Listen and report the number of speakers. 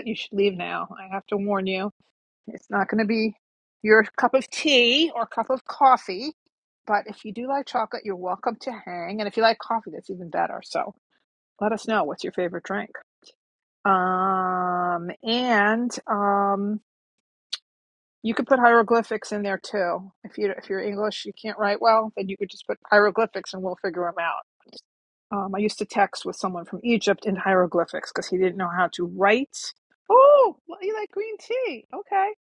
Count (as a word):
one